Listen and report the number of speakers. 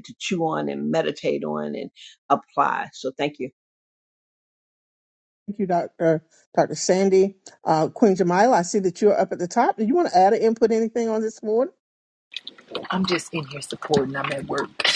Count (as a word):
three